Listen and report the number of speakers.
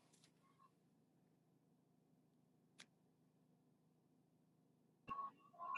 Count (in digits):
0